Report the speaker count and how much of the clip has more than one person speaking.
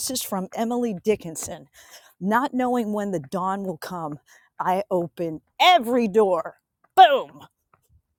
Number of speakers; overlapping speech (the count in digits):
1, no overlap